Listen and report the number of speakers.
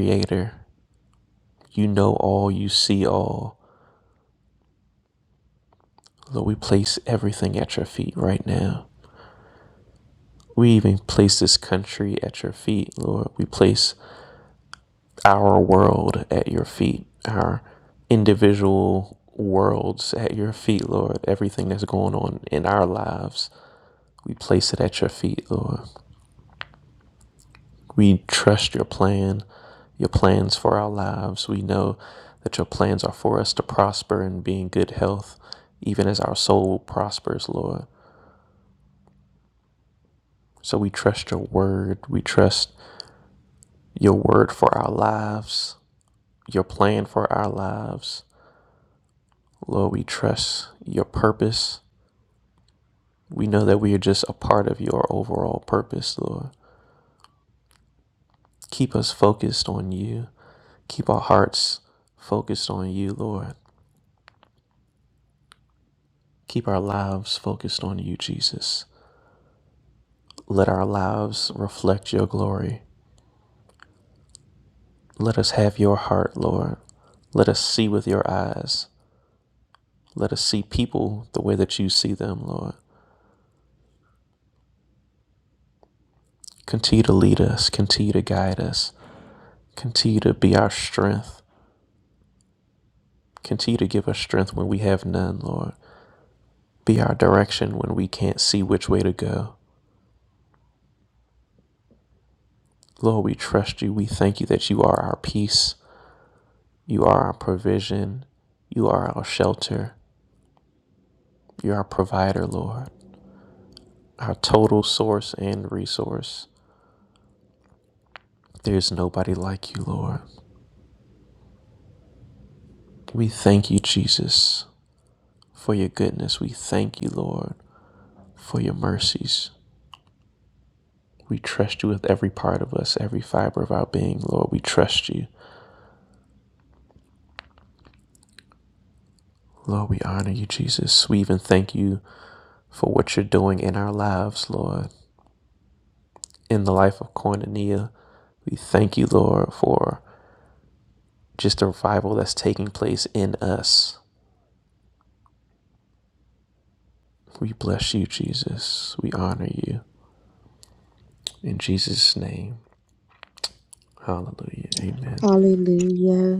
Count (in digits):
2